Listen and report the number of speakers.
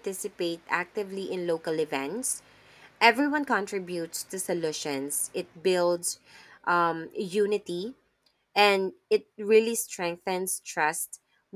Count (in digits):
1